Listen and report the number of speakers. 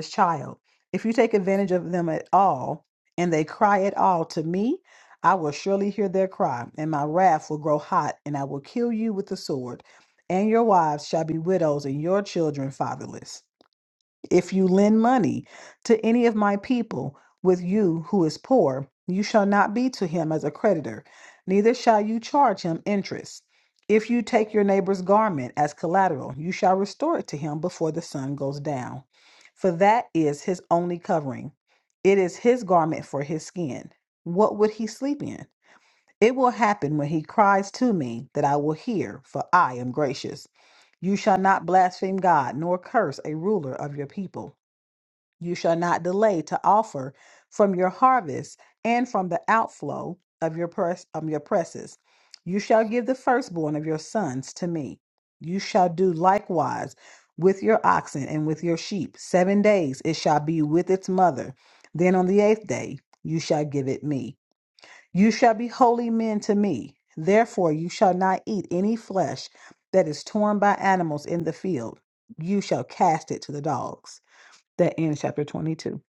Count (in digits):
1